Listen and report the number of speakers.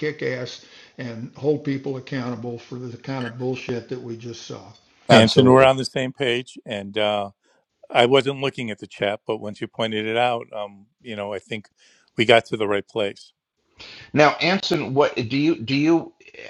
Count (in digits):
3